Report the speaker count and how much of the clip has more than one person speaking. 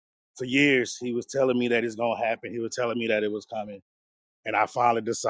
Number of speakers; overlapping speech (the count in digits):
1, no overlap